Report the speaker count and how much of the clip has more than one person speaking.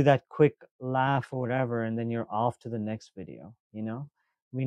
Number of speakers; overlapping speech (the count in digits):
1, no overlap